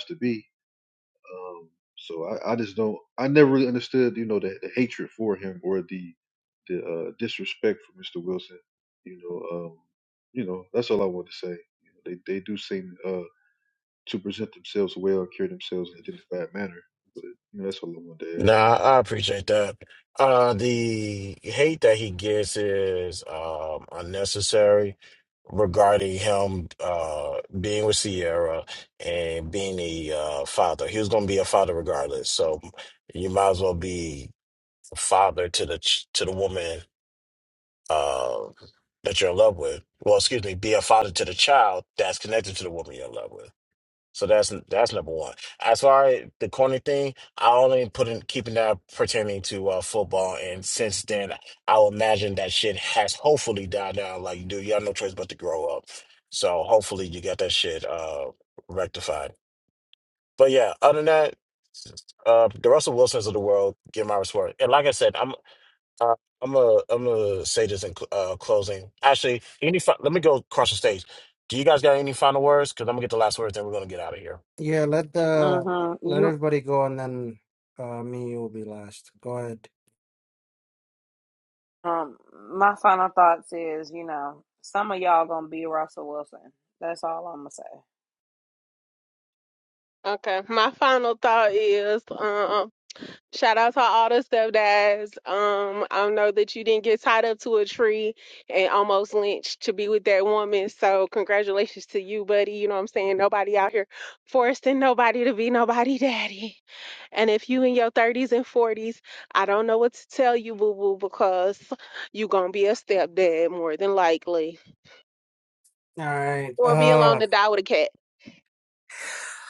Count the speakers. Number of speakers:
5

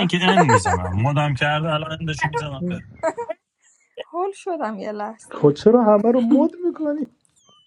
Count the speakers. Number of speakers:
3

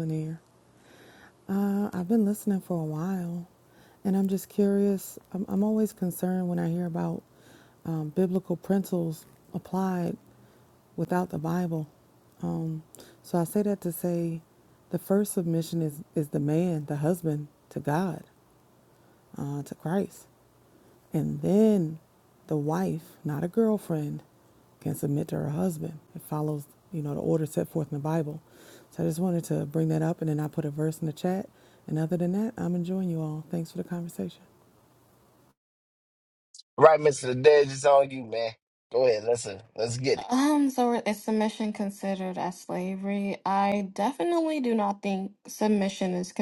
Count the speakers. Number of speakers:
3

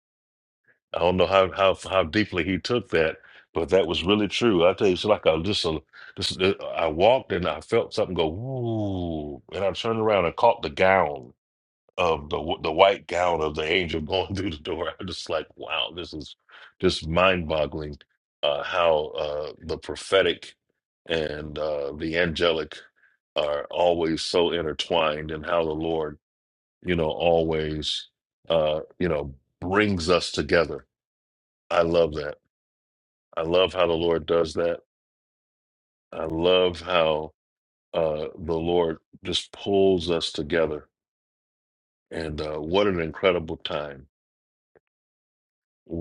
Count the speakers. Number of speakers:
1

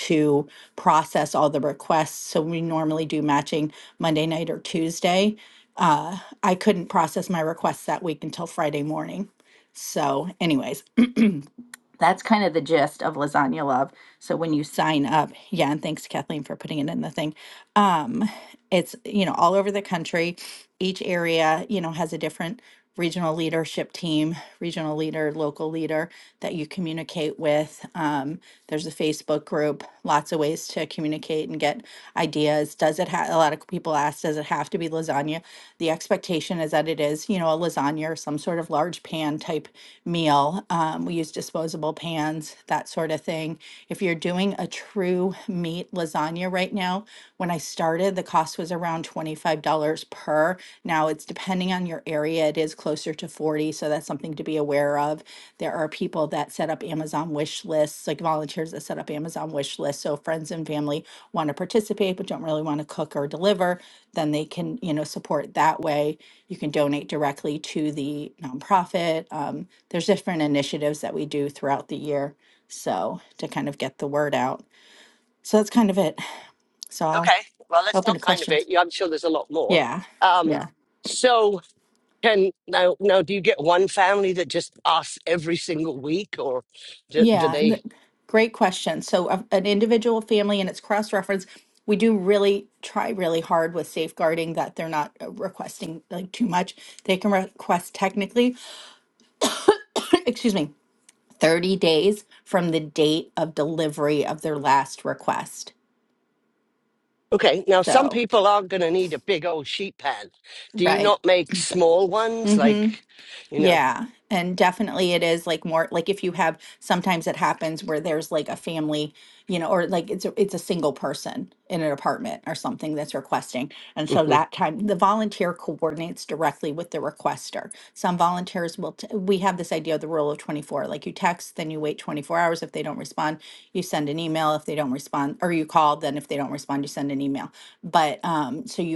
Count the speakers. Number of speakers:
2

